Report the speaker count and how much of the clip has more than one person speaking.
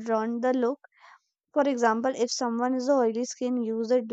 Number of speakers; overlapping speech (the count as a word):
one, no overlap